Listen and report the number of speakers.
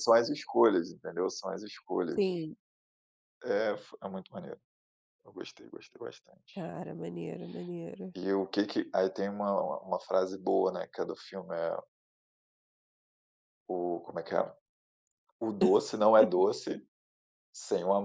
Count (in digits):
2